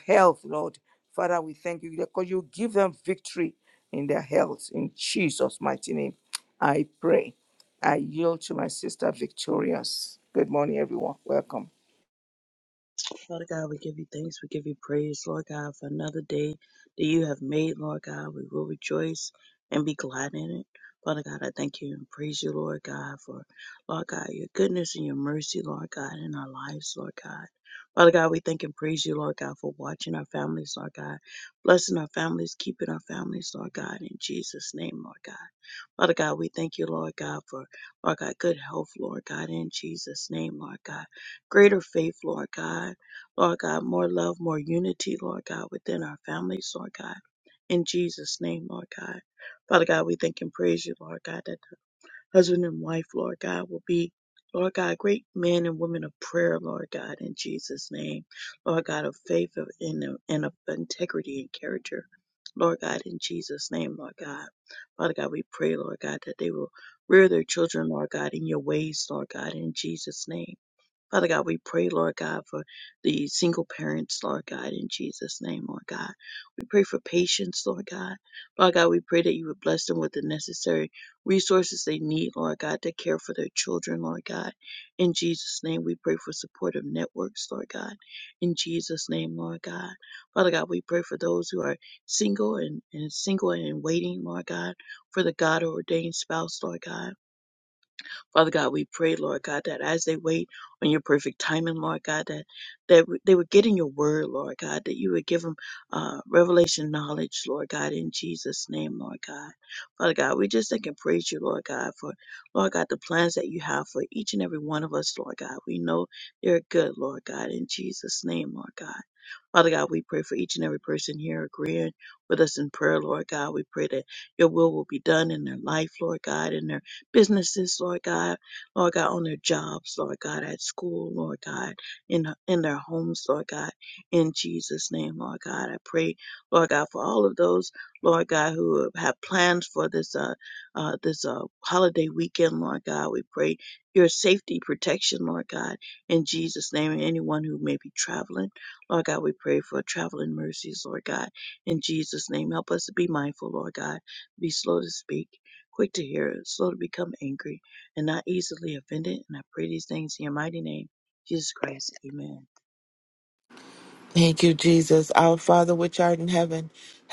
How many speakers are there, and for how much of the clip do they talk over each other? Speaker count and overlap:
three, no overlap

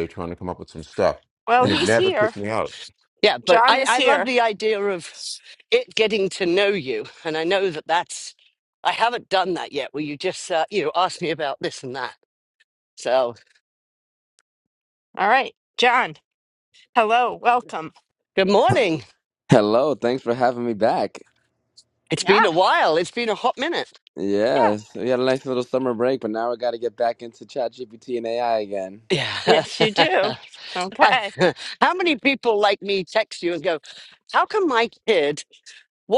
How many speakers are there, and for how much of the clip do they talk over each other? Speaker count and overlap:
four, about 6%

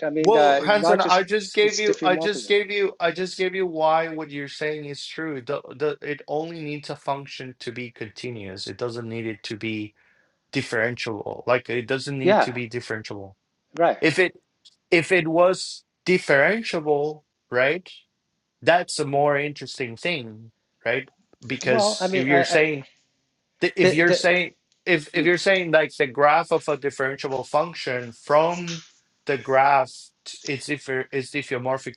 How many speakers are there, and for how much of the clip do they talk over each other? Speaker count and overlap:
two, about 12%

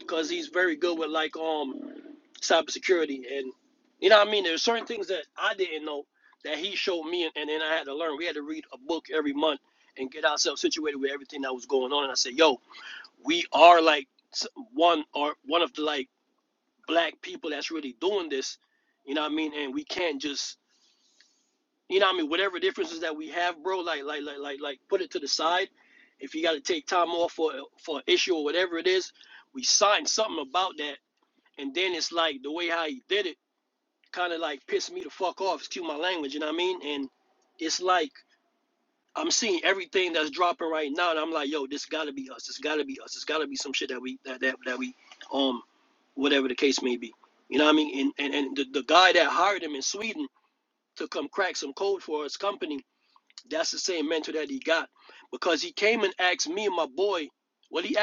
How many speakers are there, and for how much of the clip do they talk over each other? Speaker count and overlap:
one, no overlap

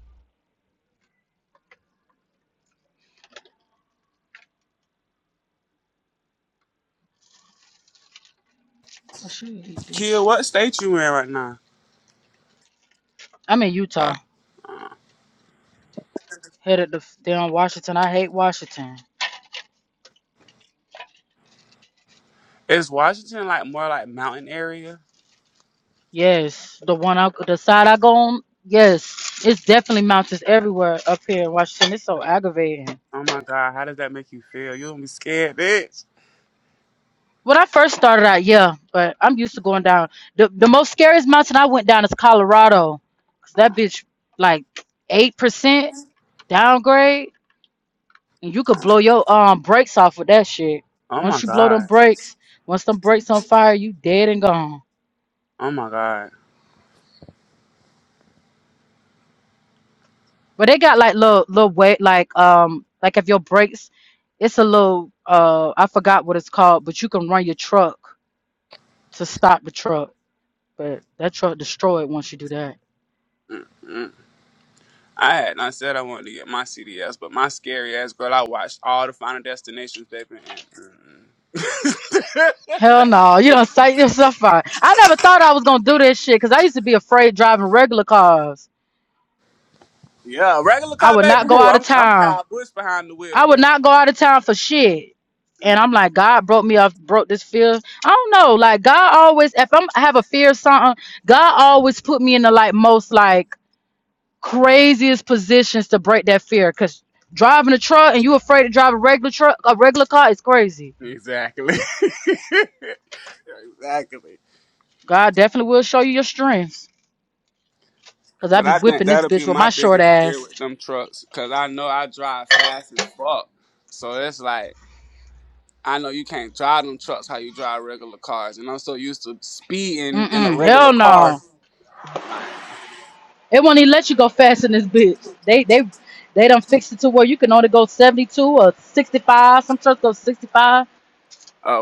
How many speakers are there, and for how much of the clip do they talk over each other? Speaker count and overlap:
two, about 4%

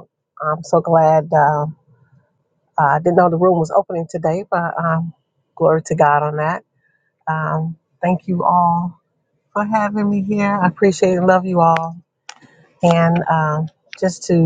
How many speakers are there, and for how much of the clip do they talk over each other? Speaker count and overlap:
one, no overlap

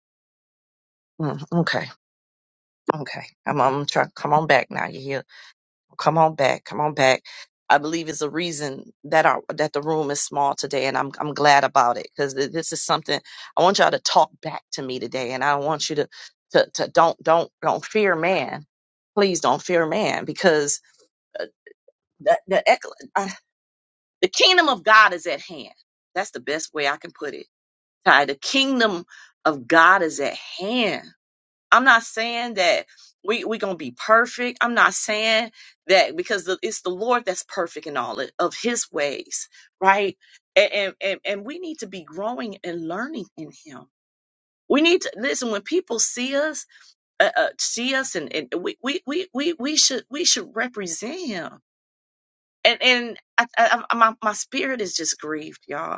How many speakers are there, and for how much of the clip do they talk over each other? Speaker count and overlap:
one, no overlap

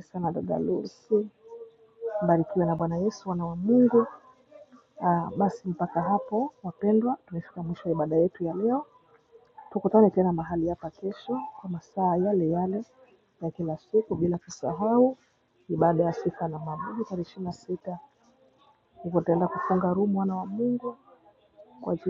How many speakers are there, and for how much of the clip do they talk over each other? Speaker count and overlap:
one, no overlap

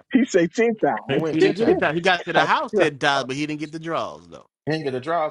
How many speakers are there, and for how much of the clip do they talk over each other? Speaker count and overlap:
three, about 14%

